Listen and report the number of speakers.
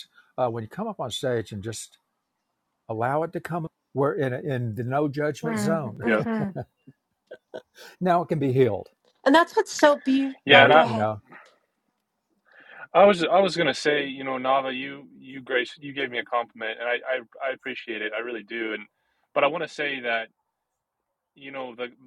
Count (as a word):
three